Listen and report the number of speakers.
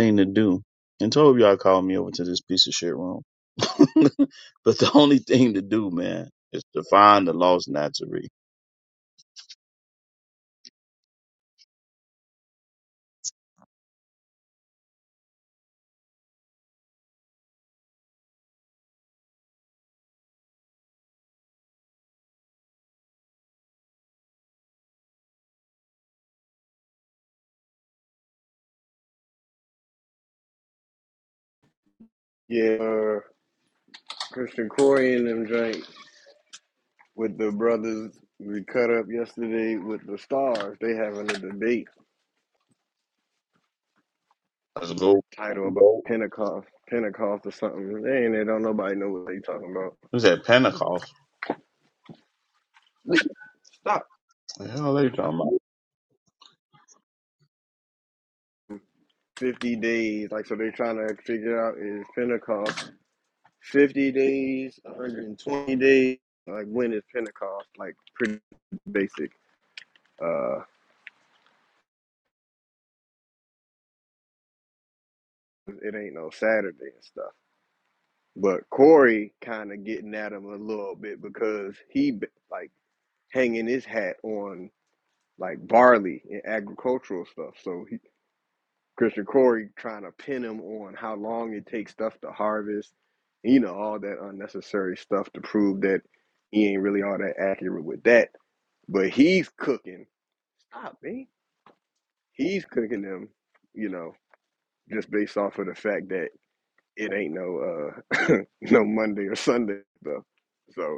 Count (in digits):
2